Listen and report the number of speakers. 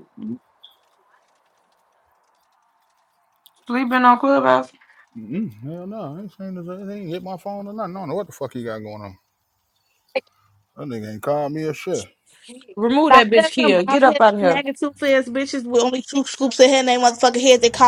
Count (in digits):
3